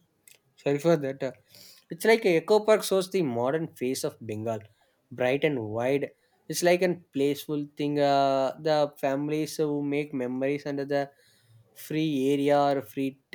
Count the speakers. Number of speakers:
1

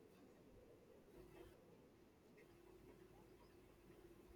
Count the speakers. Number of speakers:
0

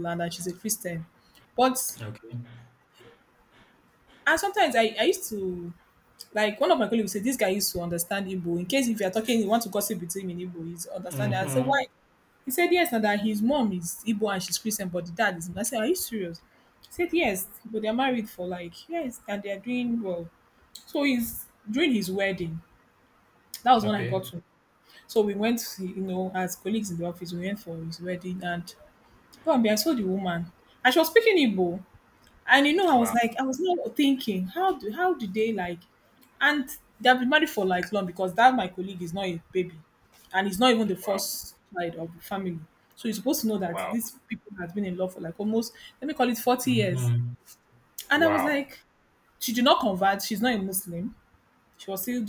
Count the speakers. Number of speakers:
2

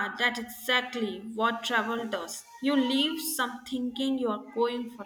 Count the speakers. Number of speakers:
1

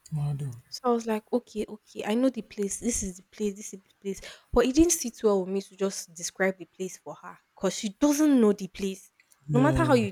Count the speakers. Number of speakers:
2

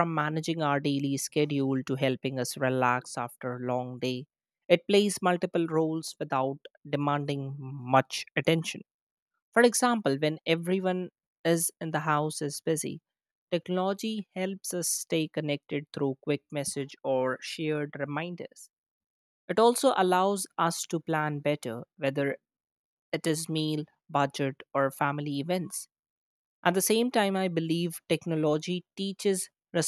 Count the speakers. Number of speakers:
1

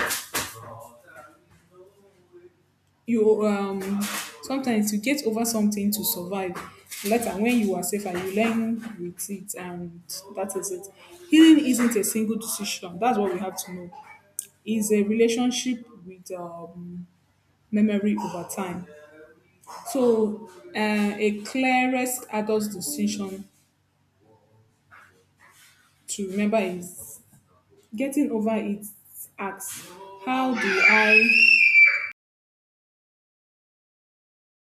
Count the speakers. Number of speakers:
1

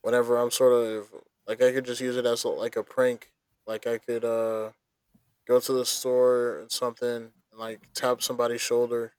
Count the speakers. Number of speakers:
1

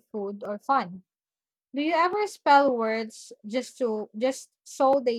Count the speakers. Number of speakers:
1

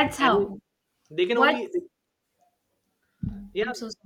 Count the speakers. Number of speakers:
2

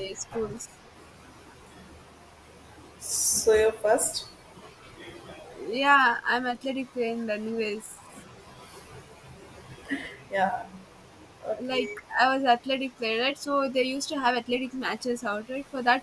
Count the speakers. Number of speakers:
2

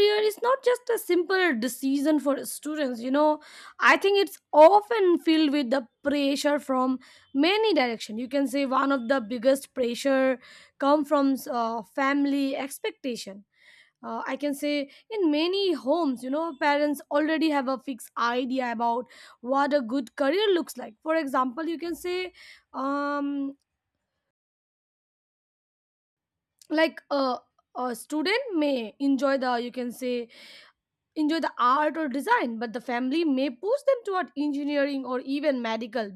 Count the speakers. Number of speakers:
1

